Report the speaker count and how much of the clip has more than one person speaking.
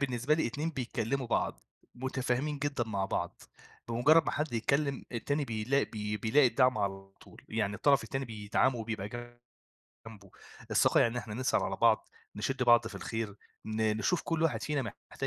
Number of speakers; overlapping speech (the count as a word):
one, no overlap